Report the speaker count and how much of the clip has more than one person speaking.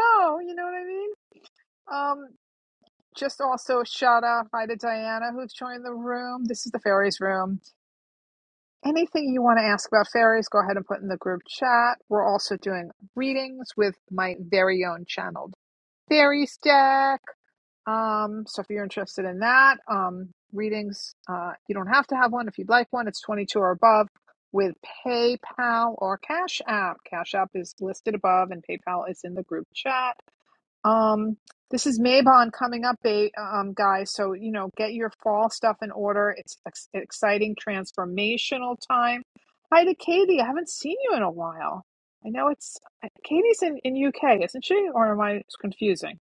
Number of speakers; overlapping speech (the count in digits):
1, no overlap